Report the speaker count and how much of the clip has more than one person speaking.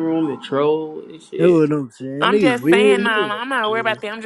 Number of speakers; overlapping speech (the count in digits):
3, about 33%